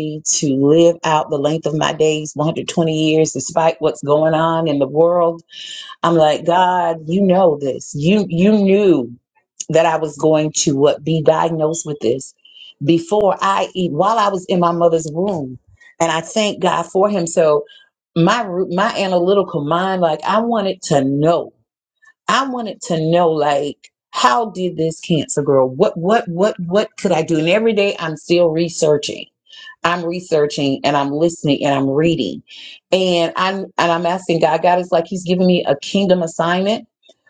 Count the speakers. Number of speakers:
1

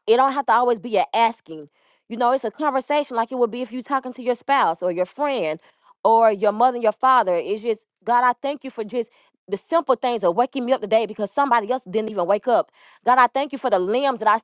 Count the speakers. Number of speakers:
1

